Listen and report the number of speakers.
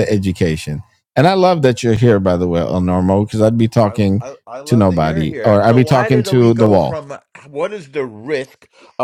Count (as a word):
two